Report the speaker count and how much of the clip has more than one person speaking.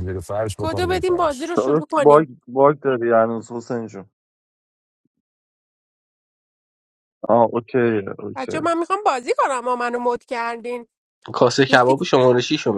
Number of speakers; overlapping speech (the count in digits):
4, about 16%